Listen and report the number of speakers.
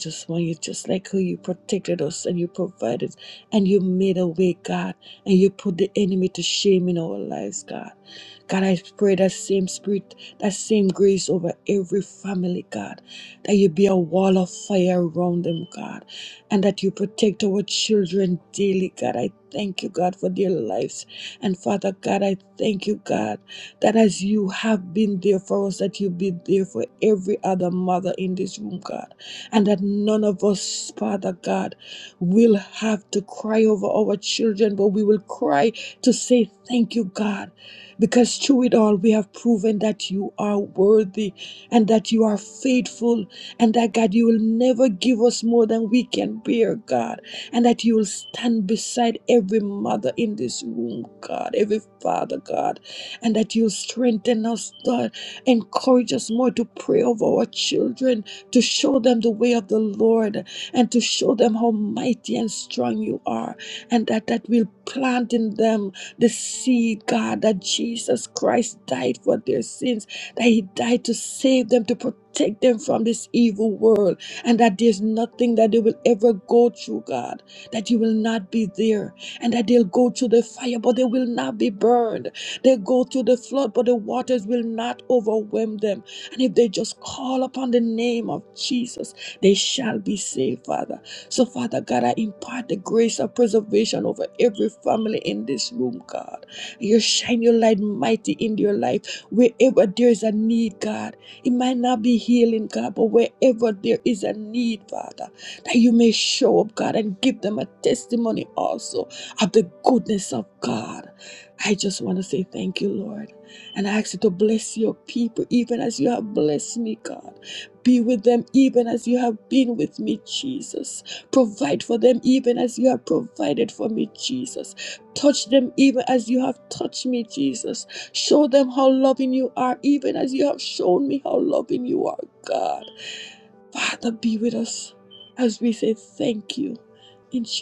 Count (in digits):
1